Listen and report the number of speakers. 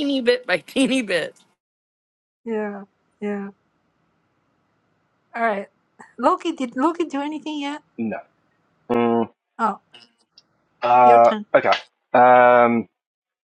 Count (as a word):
three